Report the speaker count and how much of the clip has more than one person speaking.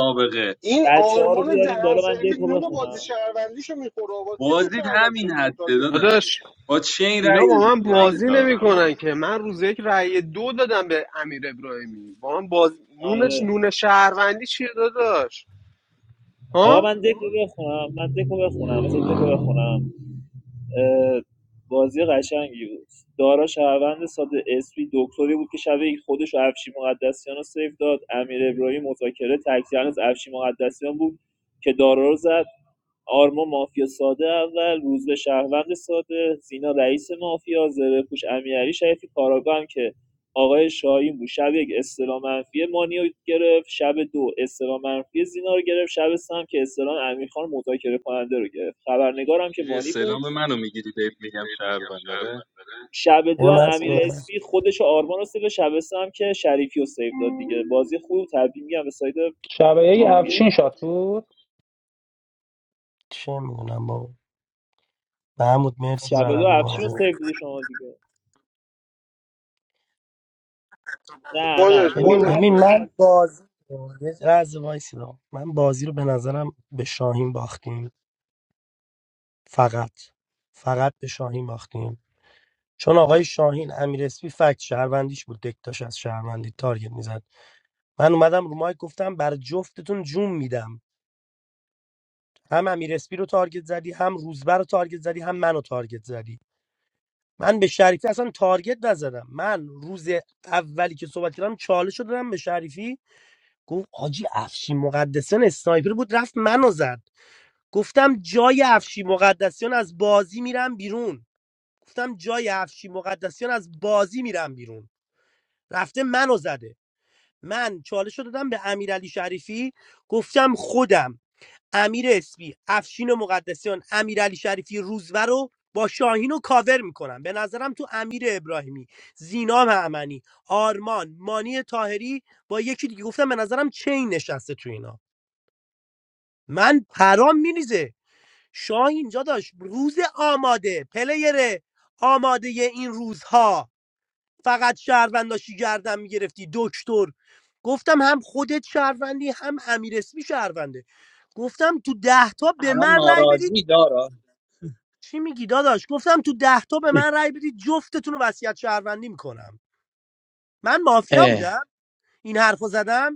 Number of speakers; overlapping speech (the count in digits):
7, about 6%